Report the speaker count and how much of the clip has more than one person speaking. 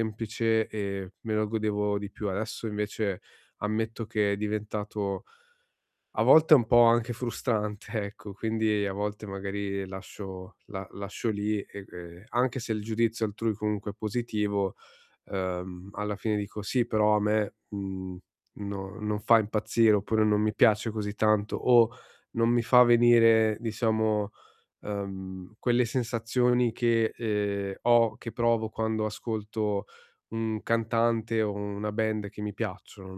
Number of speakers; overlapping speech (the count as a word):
one, no overlap